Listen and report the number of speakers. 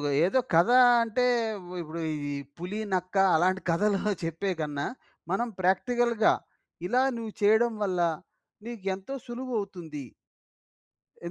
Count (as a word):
one